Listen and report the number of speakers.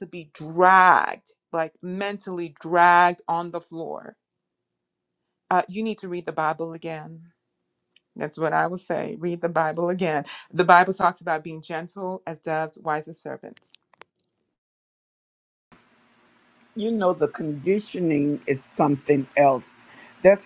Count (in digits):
2